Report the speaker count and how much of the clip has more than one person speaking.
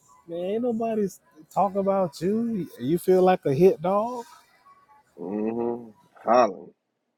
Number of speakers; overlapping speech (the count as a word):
two, no overlap